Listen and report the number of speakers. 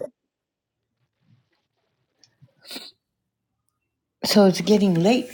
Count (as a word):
one